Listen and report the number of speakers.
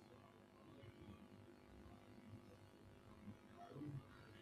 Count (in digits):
0